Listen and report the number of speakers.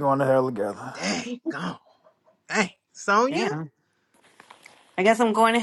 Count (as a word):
three